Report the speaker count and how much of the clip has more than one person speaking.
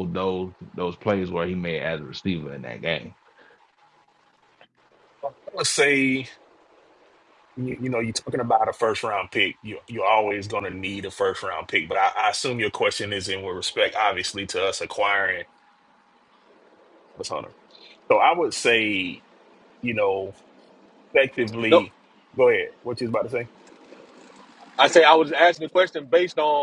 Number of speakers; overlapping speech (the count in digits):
3, about 1%